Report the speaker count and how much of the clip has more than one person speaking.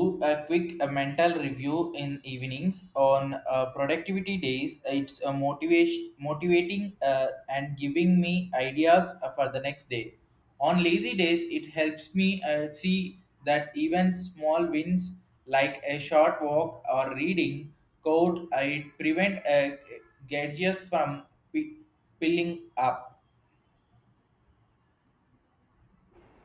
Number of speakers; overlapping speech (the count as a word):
one, no overlap